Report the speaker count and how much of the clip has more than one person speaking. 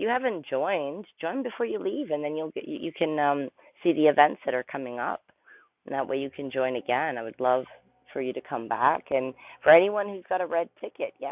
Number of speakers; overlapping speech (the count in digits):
1, no overlap